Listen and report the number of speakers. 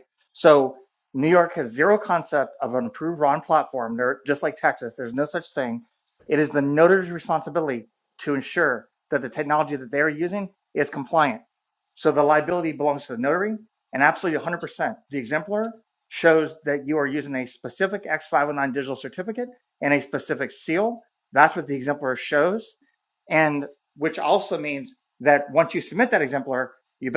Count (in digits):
1